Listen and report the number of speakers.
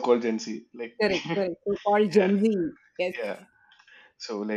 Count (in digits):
2